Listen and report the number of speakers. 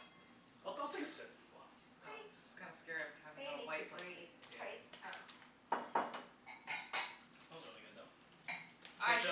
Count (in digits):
4